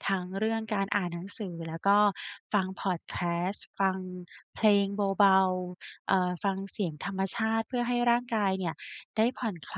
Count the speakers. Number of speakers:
1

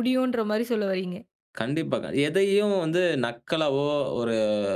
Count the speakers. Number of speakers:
2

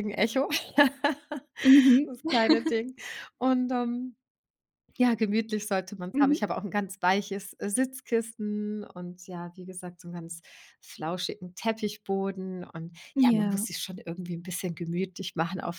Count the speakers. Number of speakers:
2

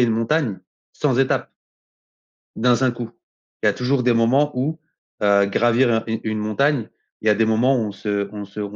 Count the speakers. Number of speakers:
1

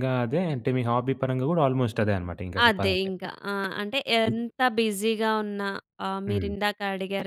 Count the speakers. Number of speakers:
2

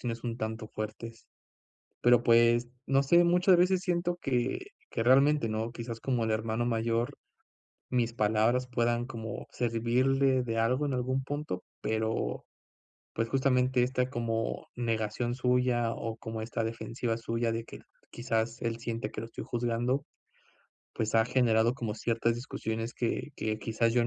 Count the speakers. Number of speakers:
1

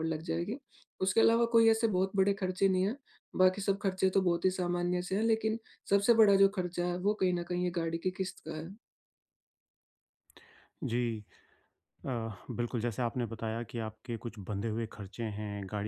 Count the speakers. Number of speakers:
2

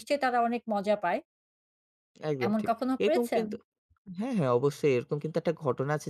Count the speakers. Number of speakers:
2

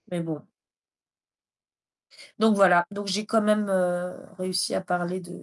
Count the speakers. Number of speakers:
1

